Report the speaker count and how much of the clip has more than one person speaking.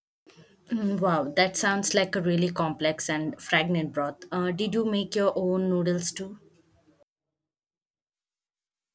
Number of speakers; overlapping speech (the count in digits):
1, no overlap